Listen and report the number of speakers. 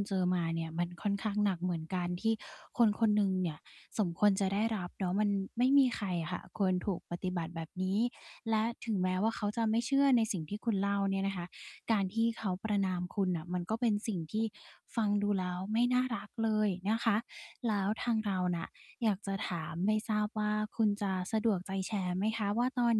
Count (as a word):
one